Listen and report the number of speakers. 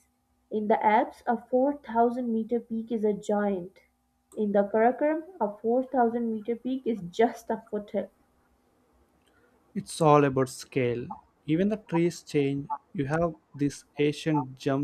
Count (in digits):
2